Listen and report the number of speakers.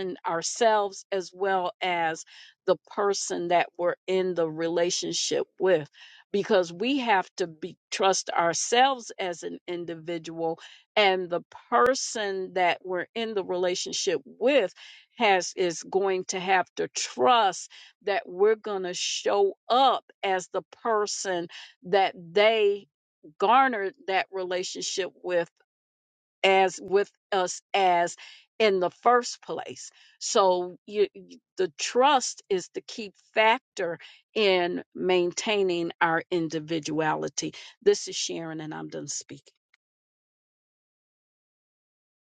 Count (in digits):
1